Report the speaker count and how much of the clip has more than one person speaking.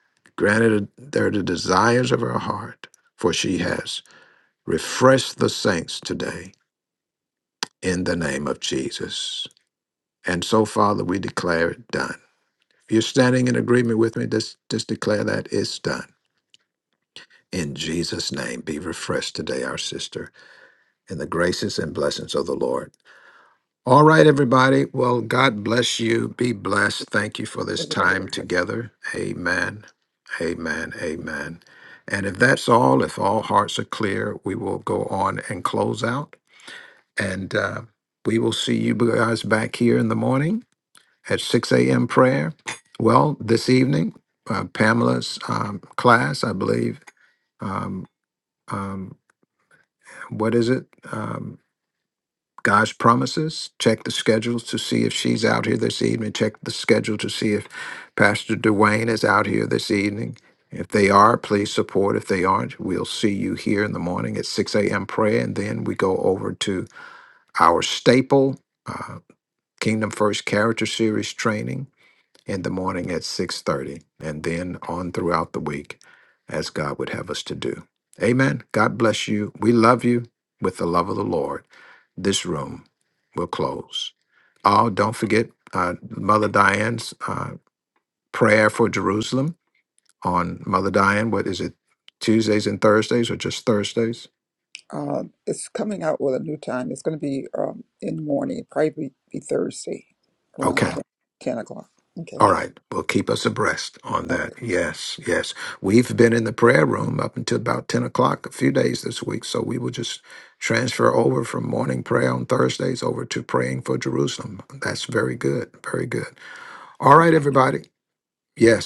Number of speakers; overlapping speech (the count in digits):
2, about 1%